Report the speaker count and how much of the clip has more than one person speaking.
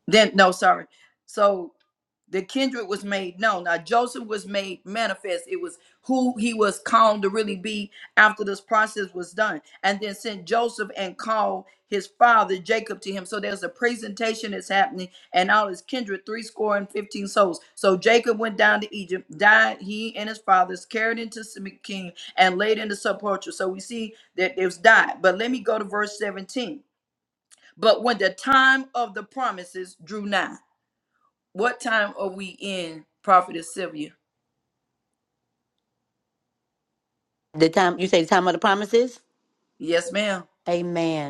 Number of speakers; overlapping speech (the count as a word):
two, no overlap